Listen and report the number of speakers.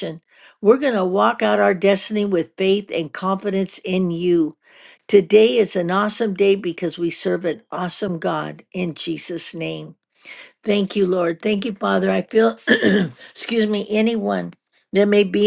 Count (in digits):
1